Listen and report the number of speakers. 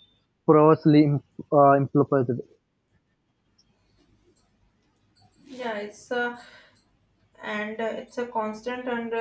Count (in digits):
2